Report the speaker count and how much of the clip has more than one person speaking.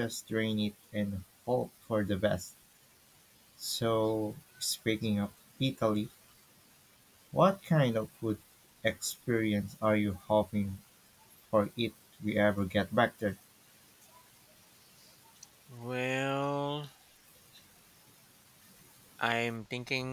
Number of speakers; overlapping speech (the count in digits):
2, no overlap